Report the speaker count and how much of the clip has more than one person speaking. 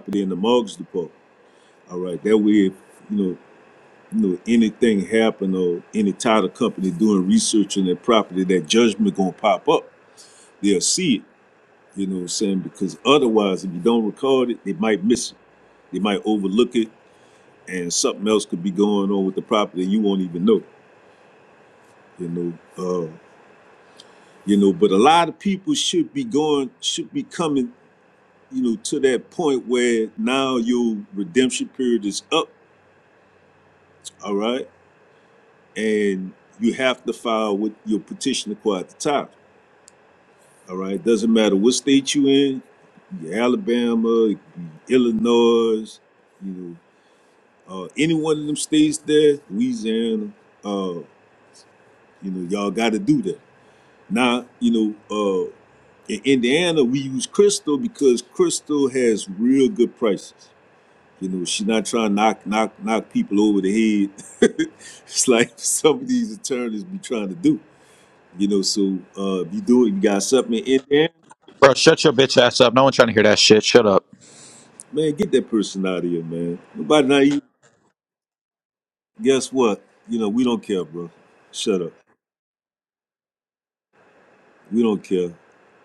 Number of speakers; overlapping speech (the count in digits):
2, no overlap